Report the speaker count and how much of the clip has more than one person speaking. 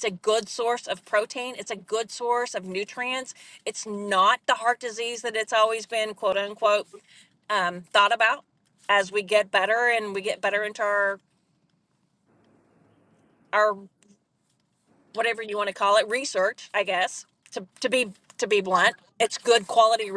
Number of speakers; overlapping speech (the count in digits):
1, no overlap